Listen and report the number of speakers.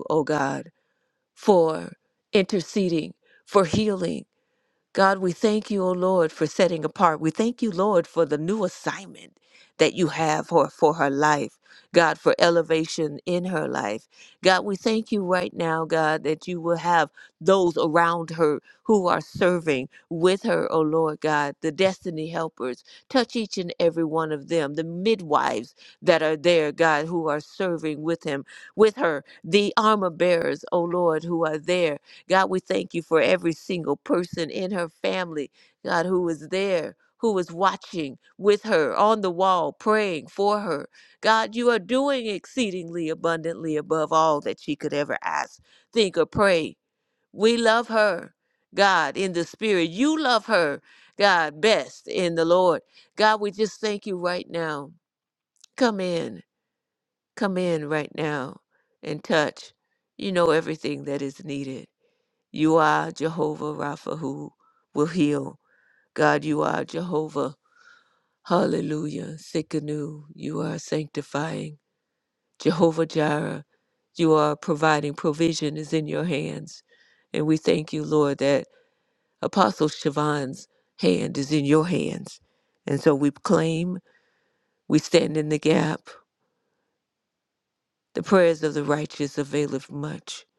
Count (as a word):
one